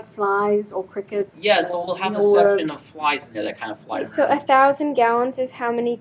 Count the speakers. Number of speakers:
3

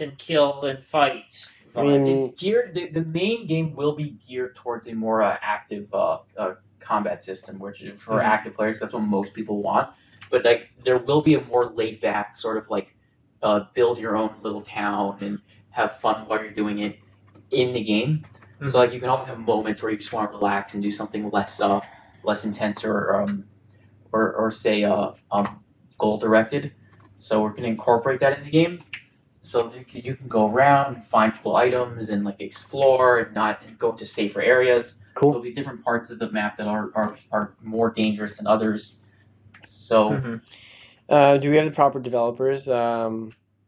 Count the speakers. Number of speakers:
3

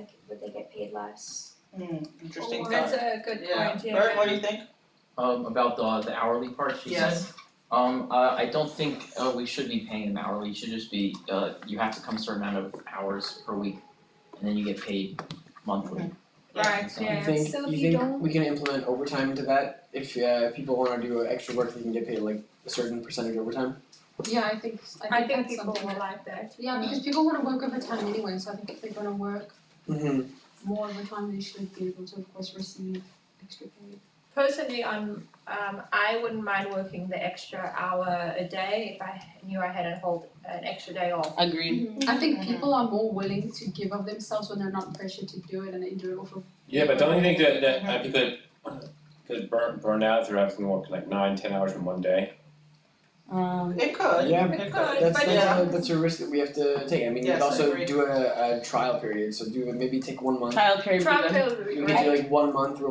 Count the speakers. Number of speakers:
8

